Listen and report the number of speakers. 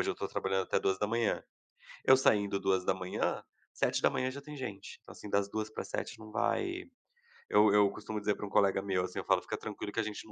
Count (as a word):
one